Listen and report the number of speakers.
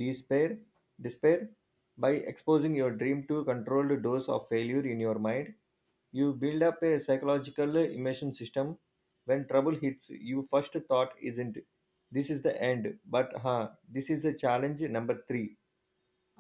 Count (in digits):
1